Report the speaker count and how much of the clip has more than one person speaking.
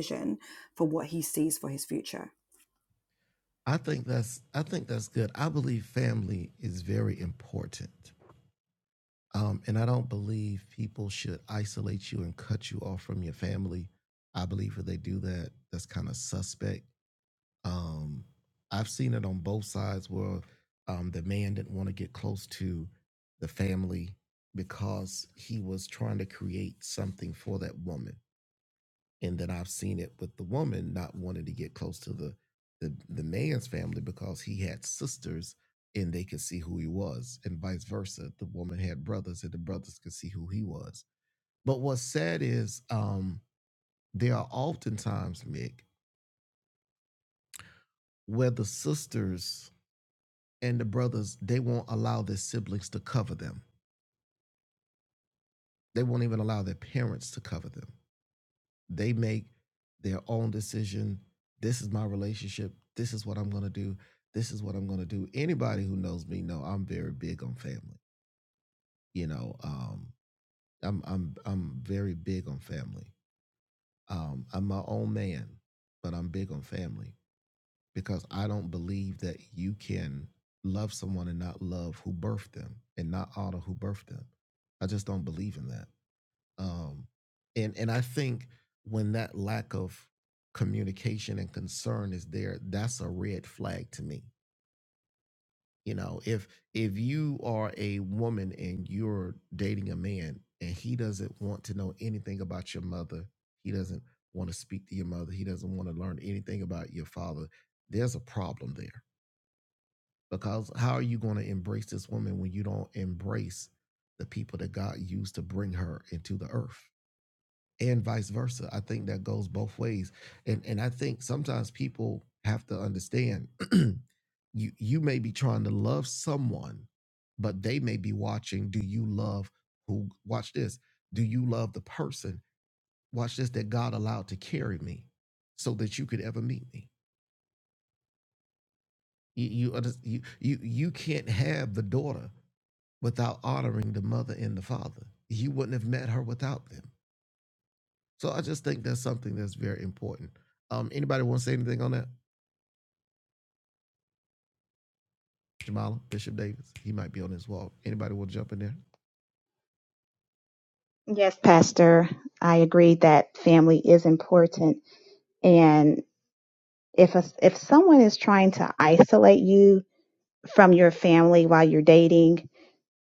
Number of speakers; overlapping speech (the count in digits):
3, no overlap